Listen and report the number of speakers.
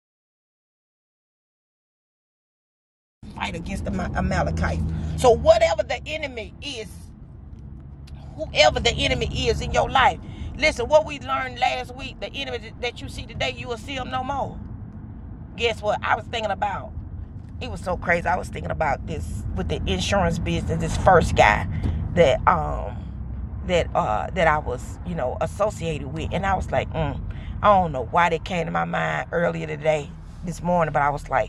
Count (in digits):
1